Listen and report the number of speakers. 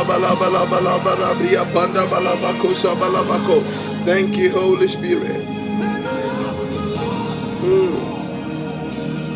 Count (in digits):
1